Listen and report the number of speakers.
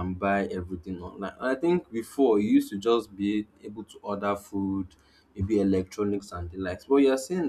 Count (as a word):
one